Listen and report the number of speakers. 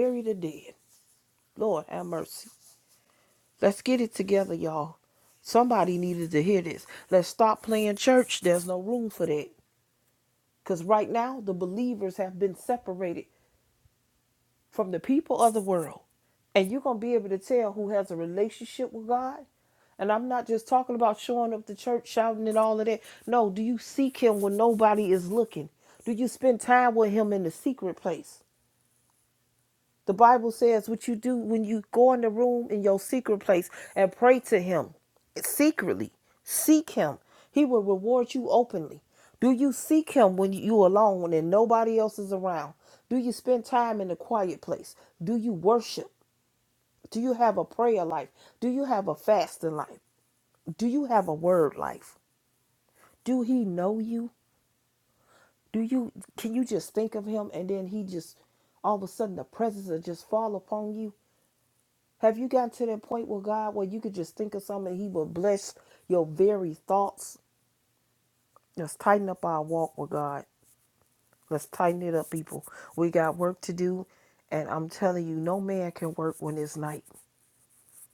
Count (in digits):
1